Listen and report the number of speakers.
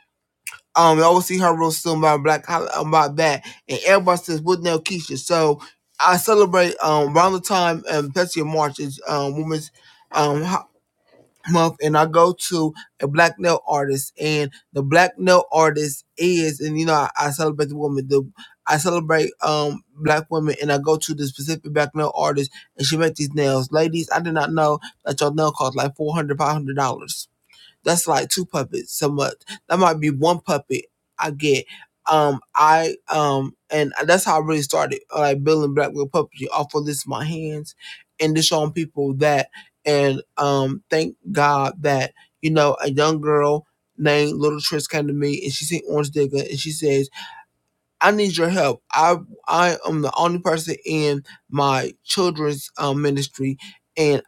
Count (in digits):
1